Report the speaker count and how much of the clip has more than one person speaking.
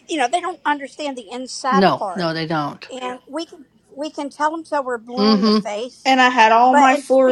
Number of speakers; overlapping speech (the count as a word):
three, about 22%